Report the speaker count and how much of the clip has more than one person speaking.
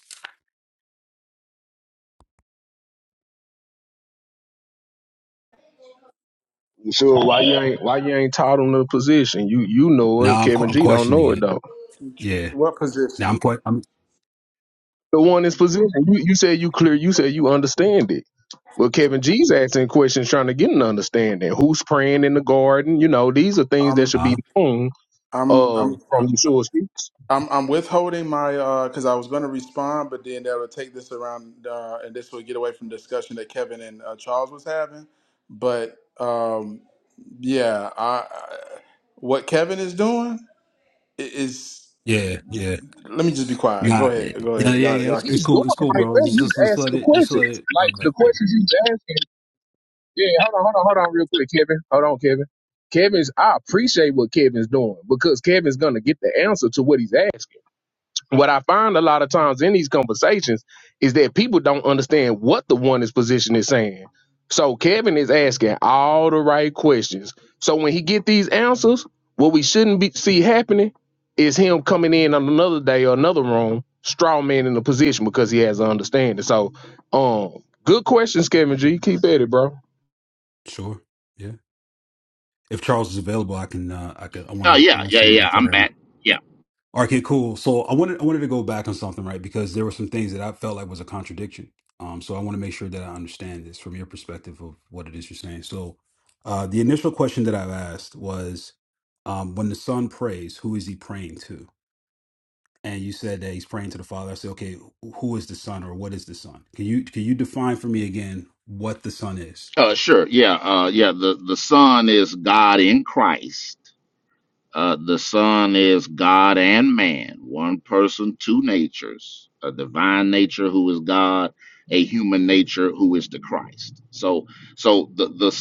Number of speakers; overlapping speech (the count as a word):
four, about 7%